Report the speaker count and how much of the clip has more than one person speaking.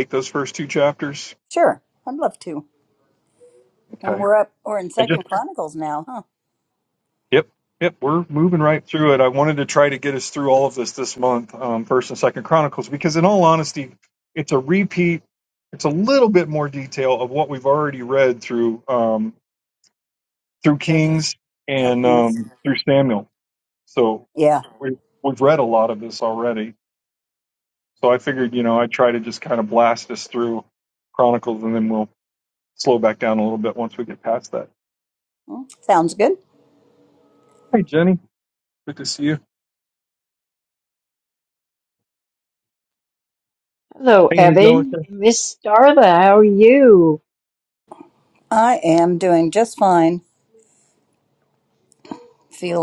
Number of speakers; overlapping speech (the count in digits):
3, about 4%